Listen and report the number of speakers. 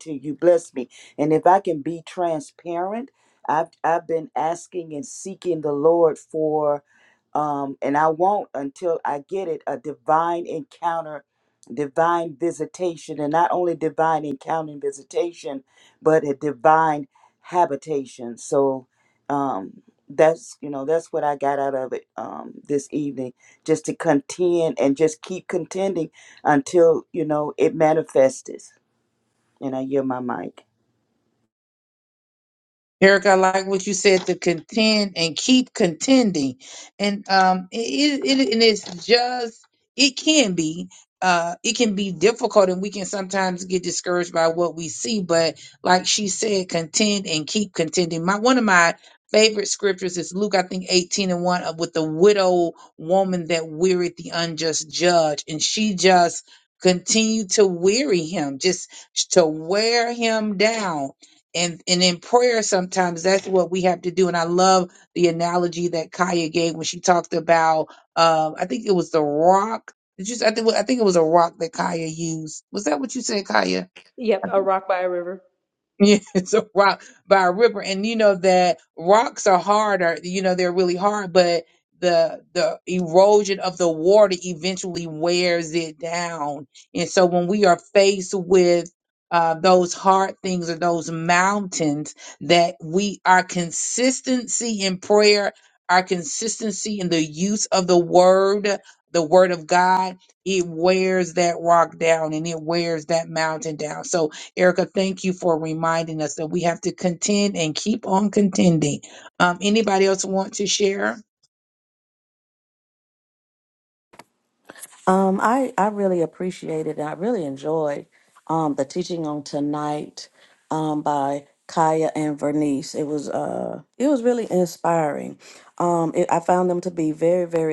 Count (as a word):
four